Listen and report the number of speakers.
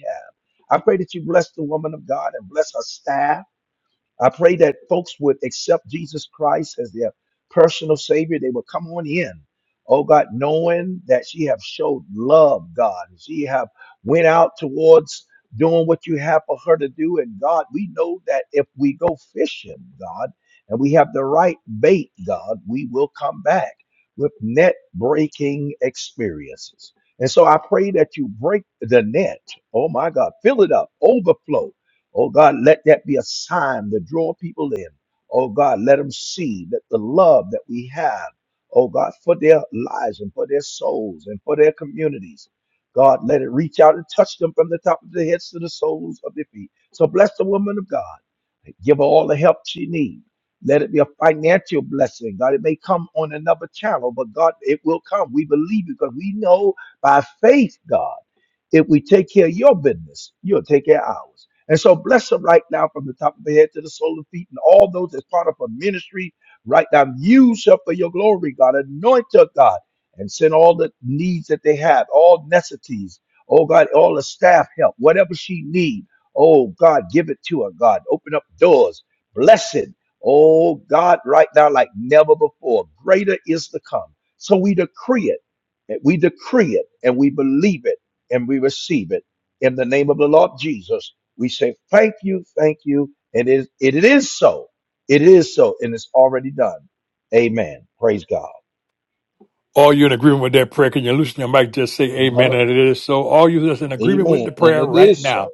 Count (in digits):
2